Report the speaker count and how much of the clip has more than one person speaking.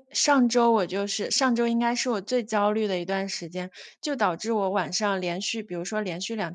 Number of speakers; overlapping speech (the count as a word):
one, no overlap